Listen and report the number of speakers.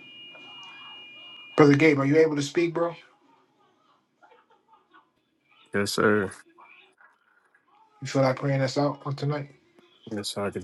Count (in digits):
2